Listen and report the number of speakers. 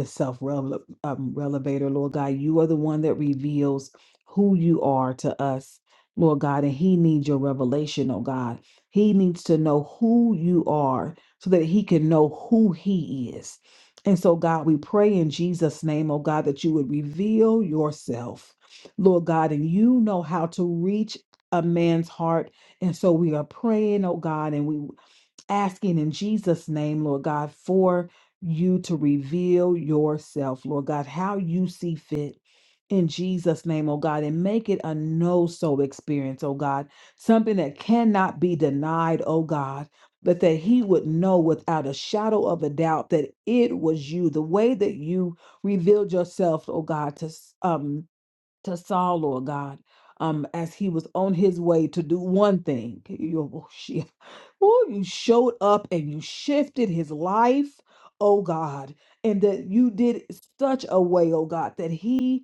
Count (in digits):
1